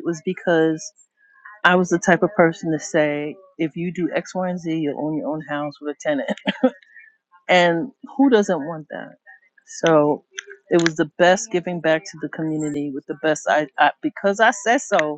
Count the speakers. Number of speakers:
1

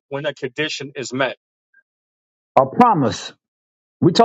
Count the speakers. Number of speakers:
2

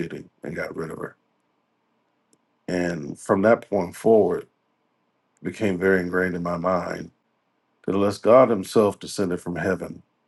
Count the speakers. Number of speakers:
1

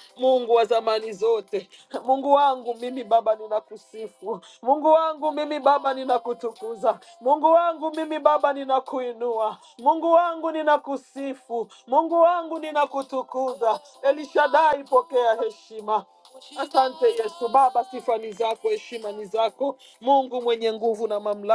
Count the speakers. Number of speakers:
1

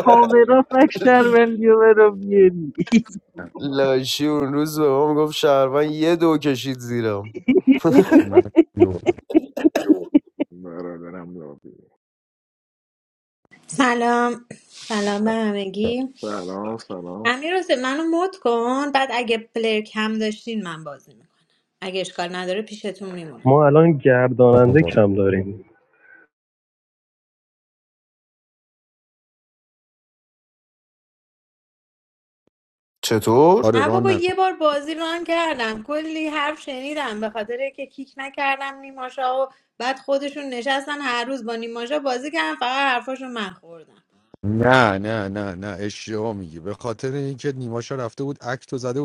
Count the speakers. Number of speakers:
6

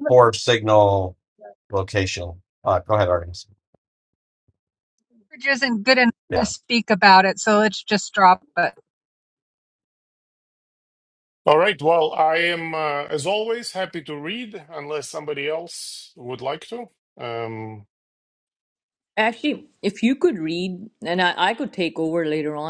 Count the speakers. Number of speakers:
4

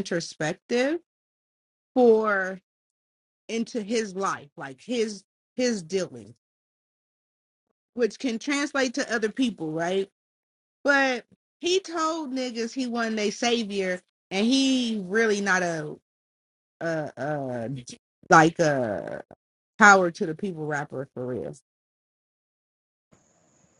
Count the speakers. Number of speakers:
1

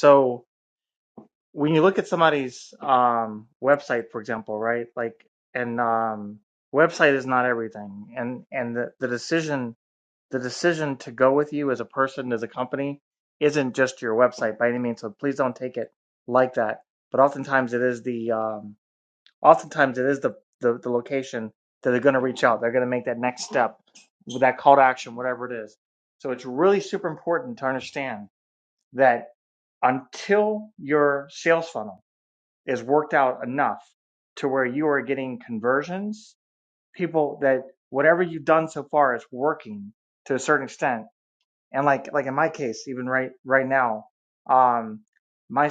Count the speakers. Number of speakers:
1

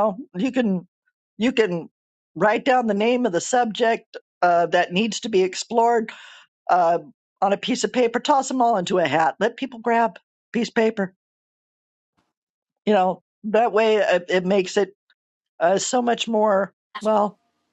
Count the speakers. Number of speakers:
1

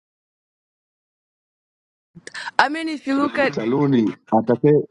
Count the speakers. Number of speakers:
2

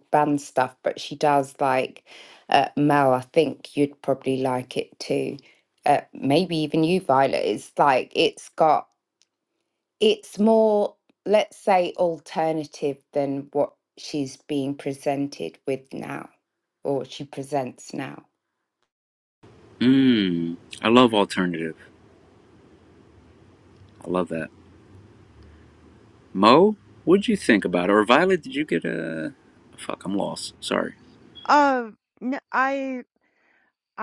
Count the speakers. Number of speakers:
3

